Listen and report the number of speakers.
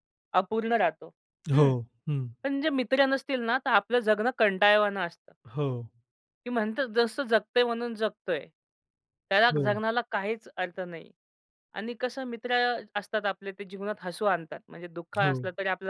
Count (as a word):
two